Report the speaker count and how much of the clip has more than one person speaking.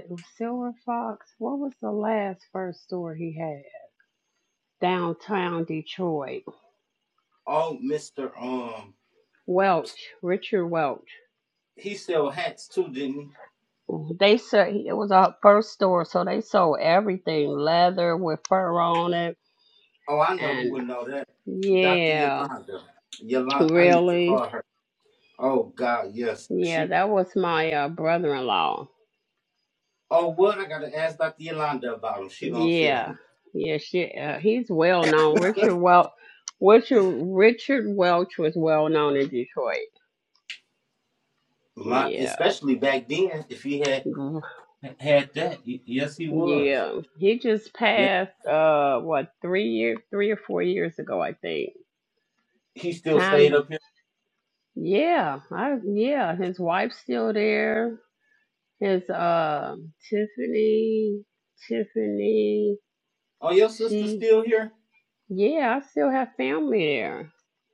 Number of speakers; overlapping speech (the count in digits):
2, about 7%